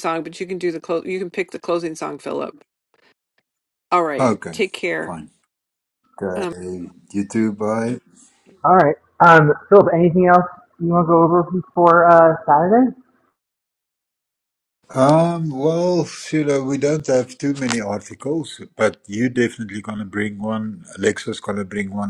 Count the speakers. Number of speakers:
3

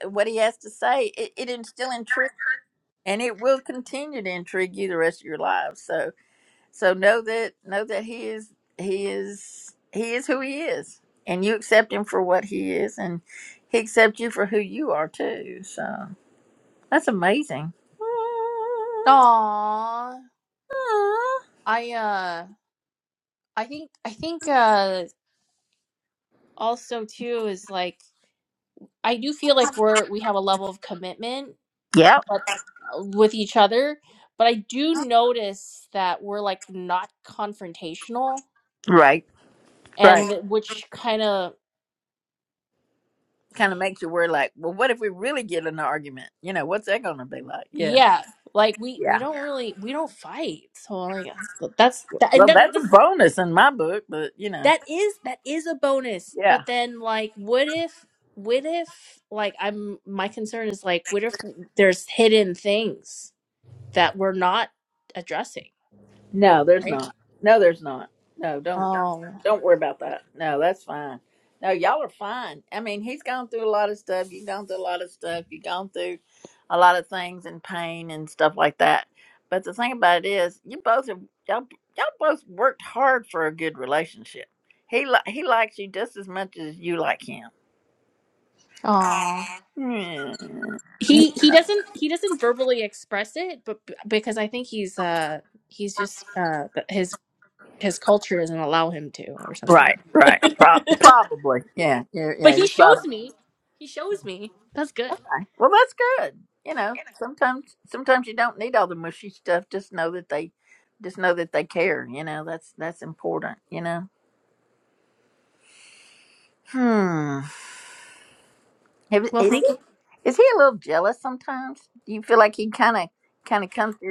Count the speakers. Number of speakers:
2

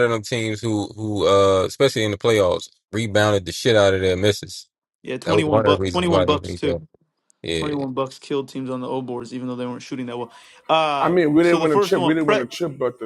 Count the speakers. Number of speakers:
3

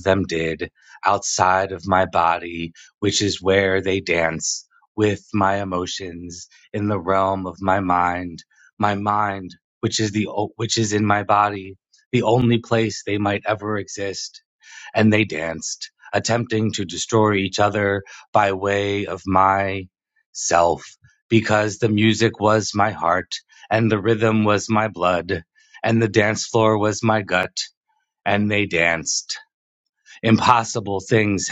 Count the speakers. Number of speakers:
1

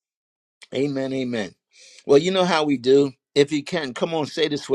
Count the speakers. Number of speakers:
1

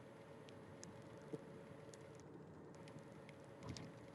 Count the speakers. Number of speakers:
0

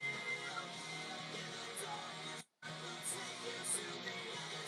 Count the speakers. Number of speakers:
0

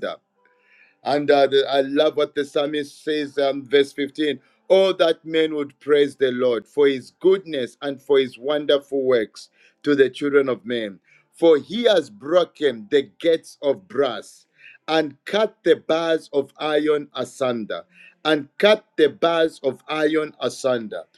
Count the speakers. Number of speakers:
1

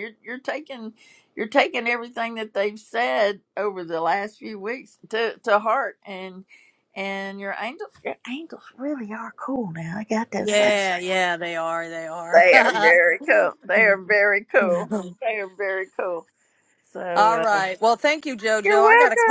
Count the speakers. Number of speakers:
2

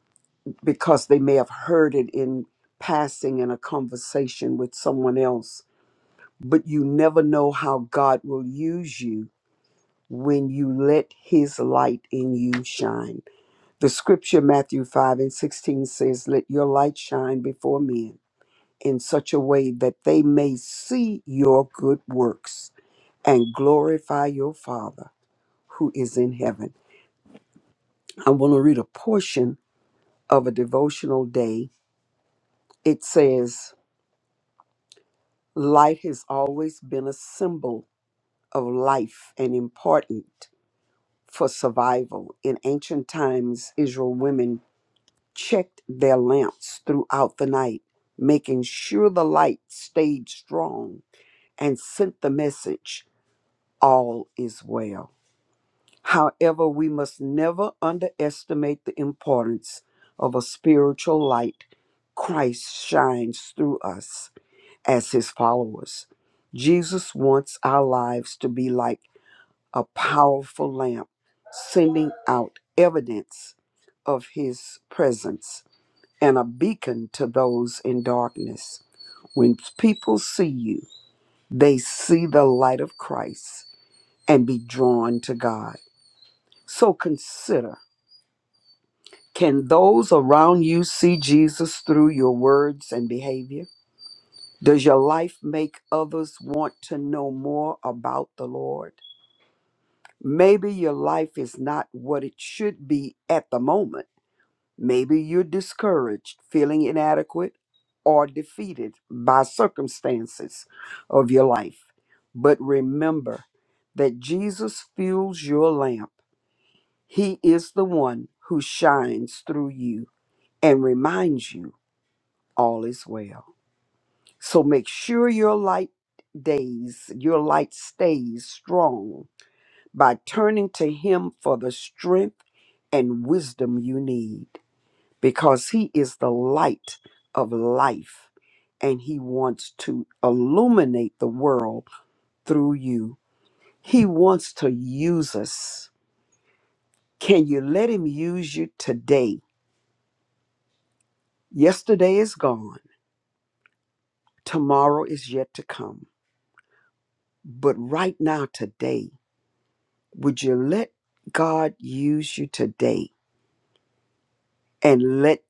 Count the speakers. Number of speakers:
1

